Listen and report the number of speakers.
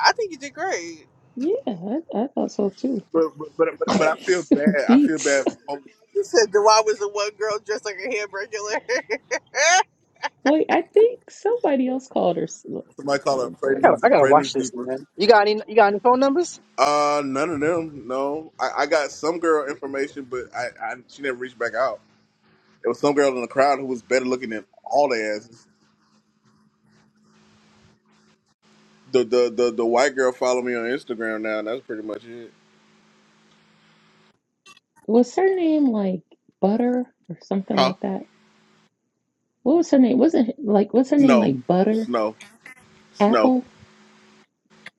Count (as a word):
four